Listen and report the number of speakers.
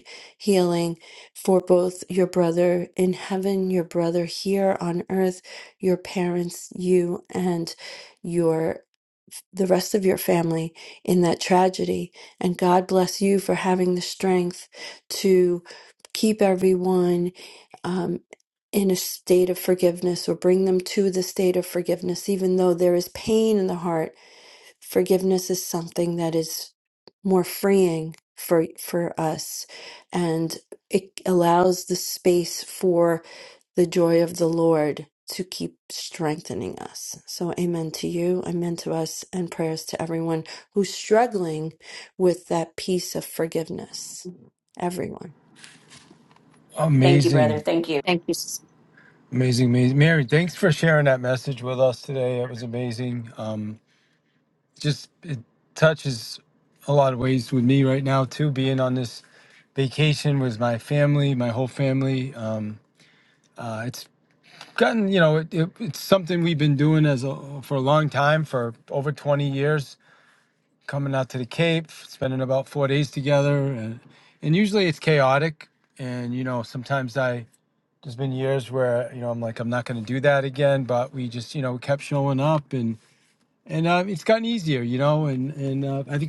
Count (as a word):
three